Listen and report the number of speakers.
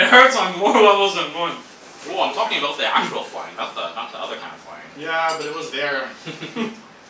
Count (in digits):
3